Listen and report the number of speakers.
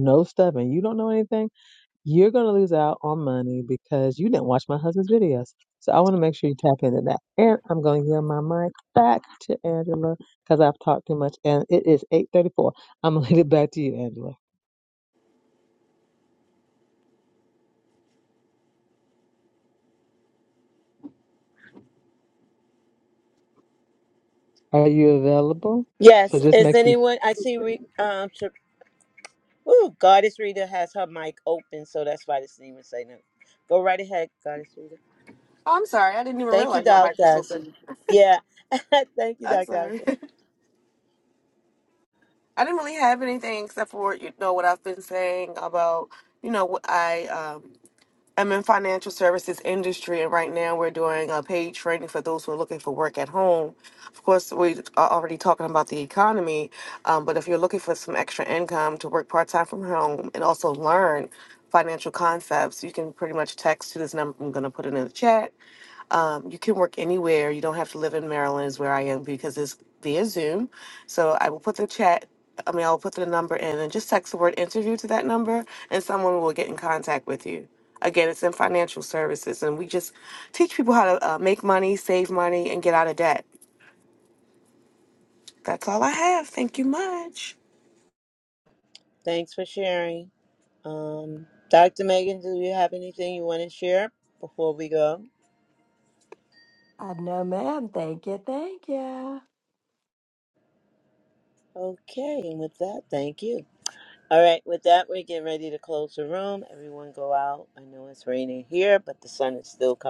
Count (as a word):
four